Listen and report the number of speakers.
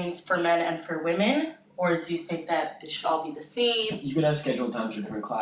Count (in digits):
2